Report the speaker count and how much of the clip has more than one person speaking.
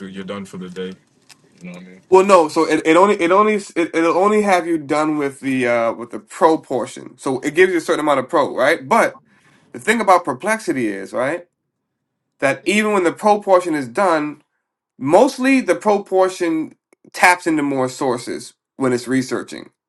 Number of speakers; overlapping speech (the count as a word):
two, no overlap